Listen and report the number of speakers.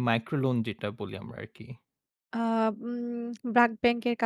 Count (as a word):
two